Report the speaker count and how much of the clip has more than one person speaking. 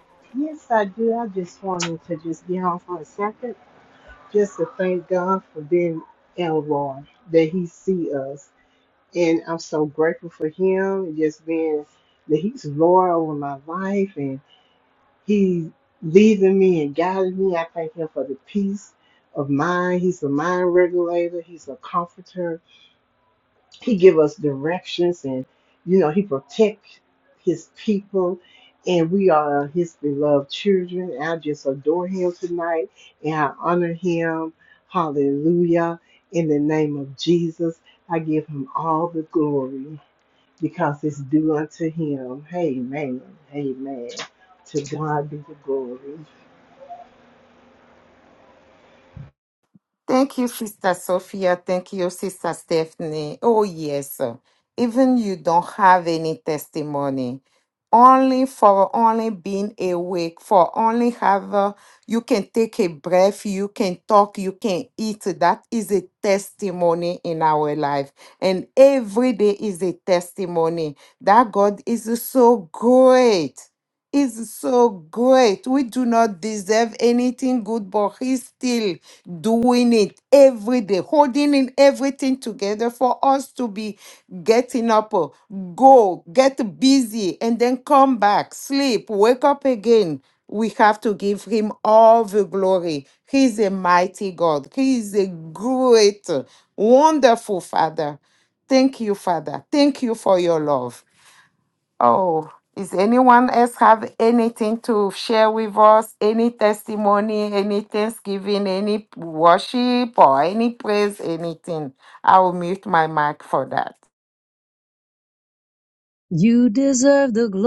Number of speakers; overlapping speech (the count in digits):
3, no overlap